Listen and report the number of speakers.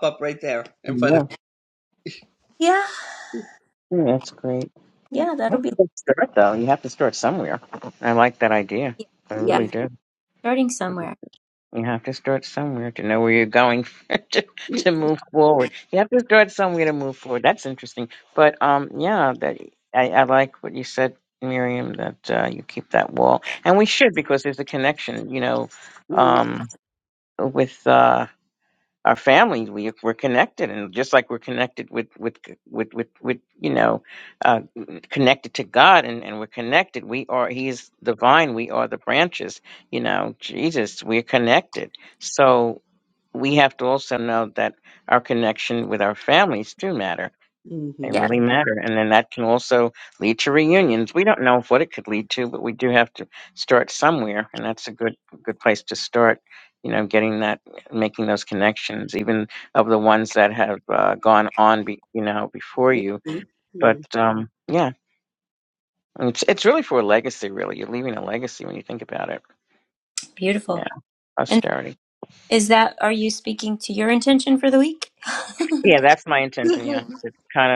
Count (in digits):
3